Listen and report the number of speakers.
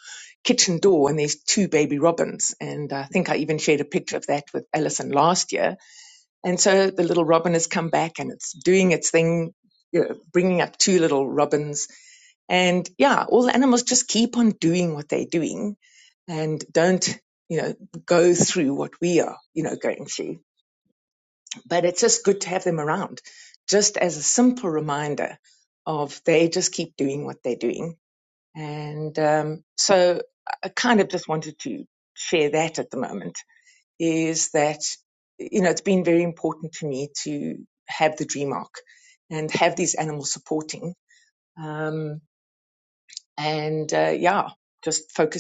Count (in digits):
1